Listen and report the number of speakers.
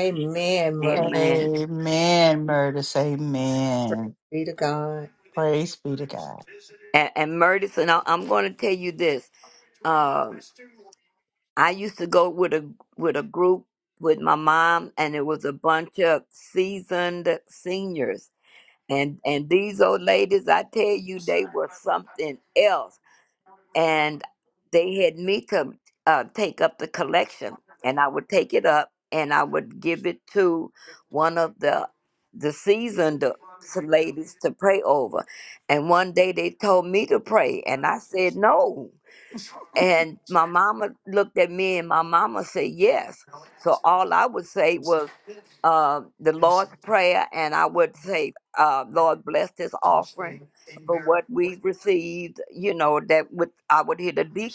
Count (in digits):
3